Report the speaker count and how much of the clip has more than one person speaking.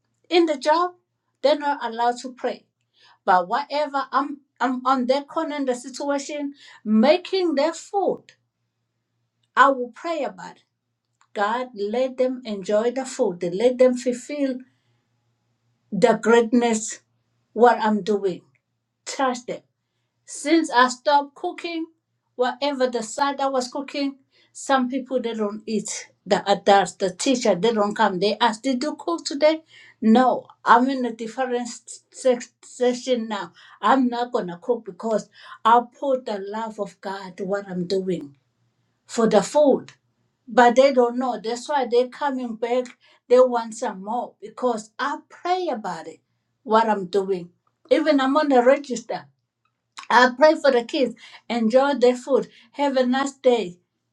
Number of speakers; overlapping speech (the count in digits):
1, no overlap